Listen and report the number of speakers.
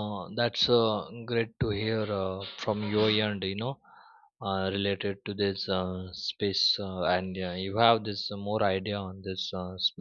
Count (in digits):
1